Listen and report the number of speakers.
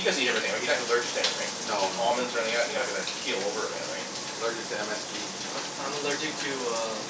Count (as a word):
three